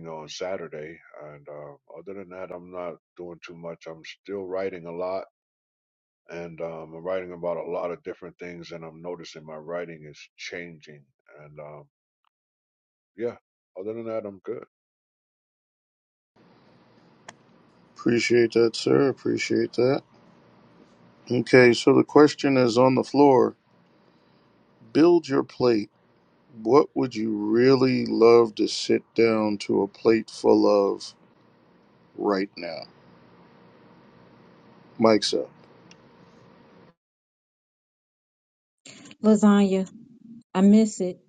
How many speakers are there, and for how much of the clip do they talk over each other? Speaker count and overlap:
three, no overlap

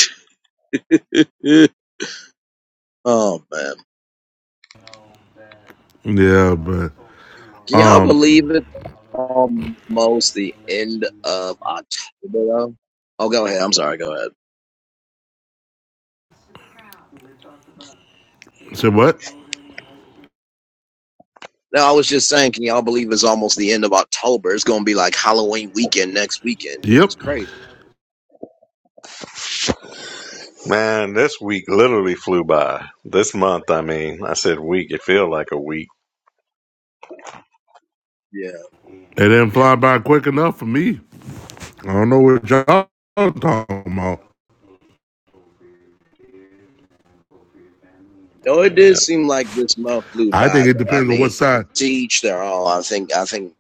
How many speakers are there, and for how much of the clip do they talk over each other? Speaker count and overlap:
three, about 5%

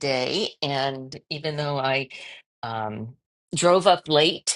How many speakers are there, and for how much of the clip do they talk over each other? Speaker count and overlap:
one, no overlap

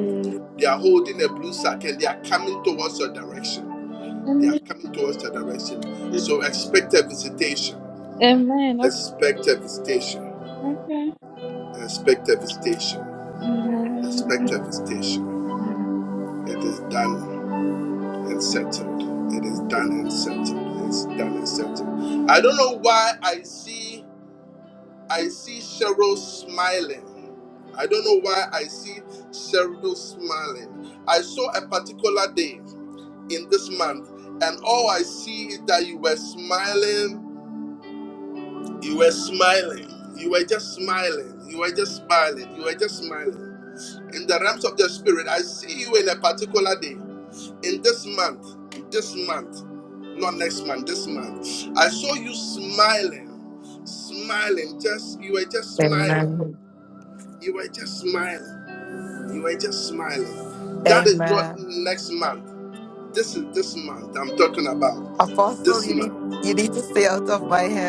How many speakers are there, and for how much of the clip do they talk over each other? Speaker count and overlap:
three, about 3%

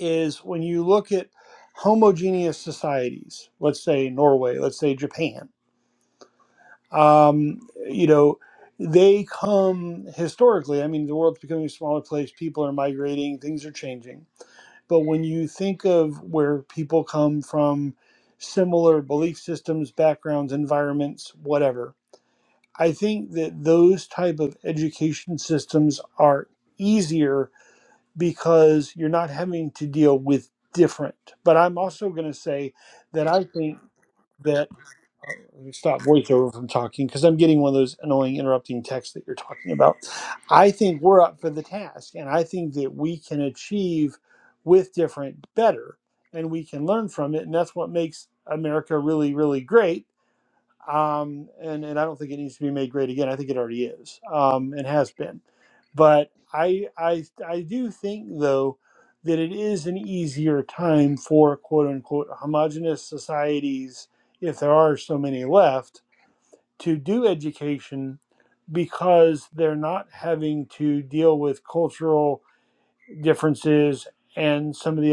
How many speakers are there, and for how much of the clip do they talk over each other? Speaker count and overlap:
one, no overlap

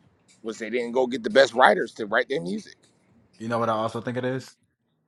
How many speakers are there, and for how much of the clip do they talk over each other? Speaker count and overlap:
two, no overlap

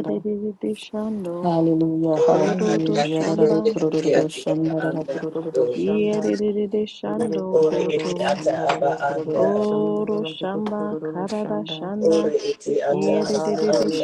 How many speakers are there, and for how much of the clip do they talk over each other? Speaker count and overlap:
three, about 76%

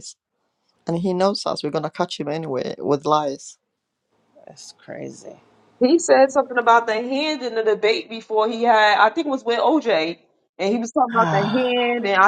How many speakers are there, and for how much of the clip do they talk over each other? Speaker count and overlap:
three, about 7%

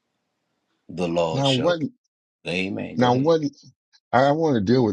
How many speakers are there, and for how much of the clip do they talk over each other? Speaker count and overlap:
two, about 15%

